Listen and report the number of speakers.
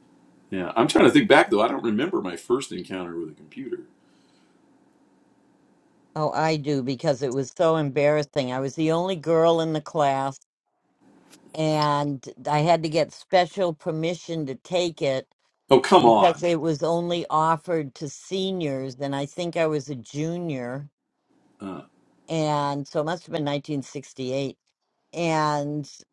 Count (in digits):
2